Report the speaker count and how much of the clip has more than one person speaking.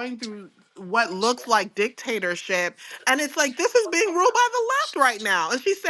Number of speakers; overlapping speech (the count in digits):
1, no overlap